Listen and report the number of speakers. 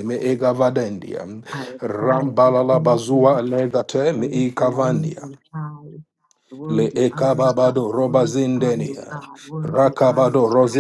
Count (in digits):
2